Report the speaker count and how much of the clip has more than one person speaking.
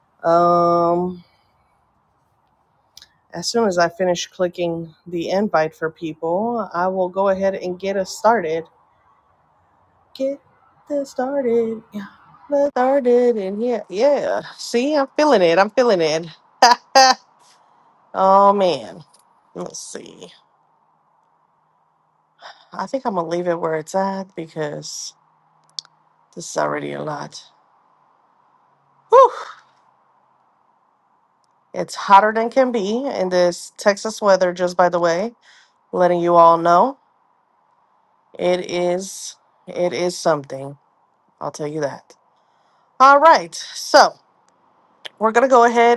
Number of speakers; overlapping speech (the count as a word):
one, no overlap